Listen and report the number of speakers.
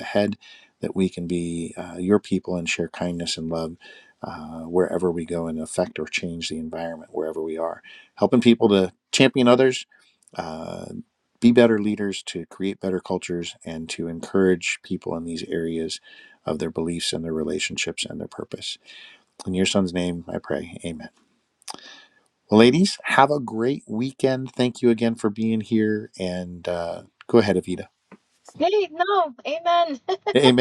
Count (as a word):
two